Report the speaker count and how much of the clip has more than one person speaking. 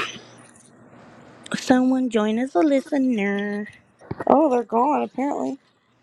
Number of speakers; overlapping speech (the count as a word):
two, no overlap